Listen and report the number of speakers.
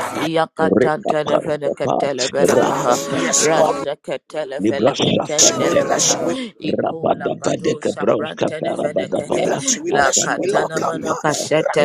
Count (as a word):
three